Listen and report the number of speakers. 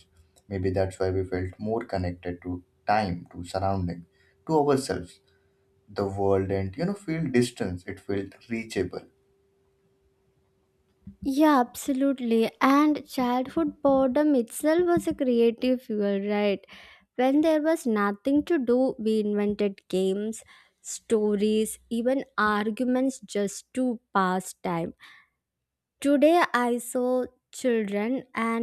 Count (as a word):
two